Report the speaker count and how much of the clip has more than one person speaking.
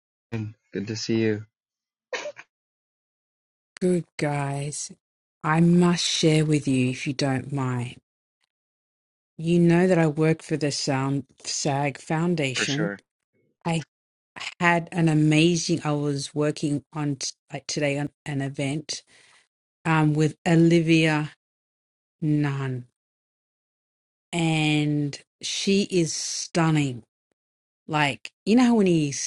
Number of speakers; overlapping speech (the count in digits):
2, about 1%